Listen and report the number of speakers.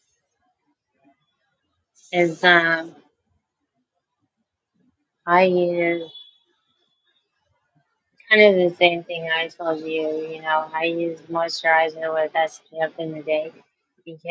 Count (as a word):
one